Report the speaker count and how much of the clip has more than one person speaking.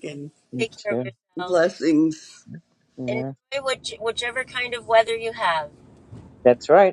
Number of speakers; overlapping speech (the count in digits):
3, about 12%